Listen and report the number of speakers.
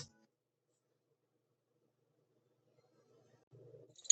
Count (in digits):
0